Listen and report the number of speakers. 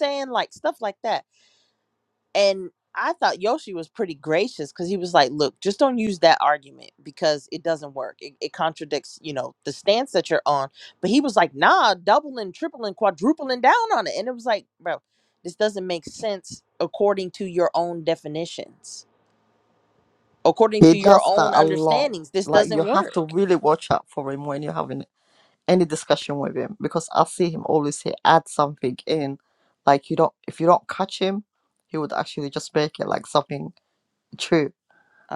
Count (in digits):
2